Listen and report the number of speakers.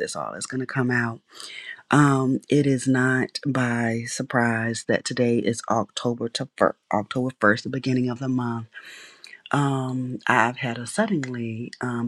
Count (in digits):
1